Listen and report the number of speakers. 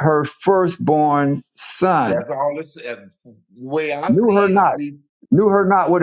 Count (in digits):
2